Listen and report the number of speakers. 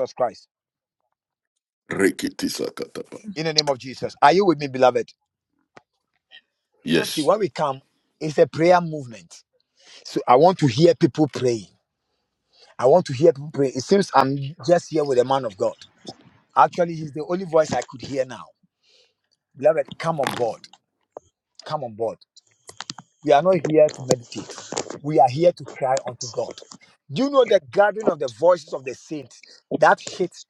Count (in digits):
2